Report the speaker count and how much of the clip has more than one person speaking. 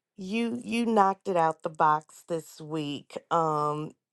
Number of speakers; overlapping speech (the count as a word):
one, no overlap